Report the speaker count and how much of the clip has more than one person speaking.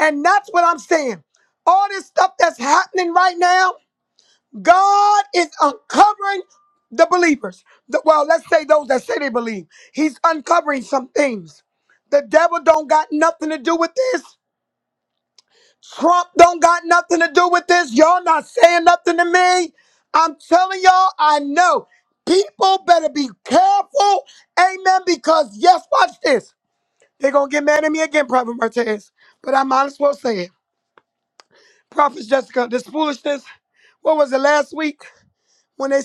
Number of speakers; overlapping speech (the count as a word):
one, no overlap